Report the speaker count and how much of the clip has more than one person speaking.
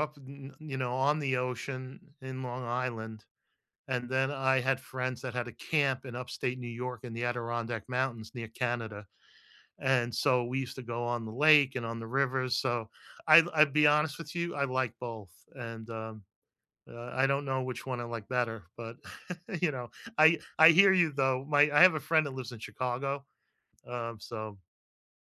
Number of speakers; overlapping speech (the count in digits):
1, no overlap